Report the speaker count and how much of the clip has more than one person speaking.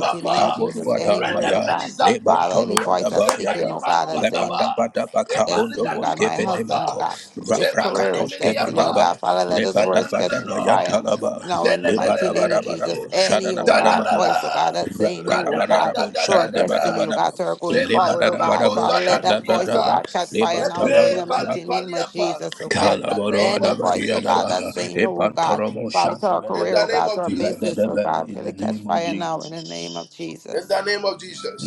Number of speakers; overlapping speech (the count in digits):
3, about 86%